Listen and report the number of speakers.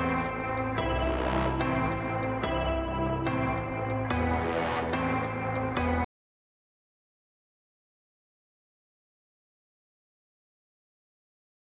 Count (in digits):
0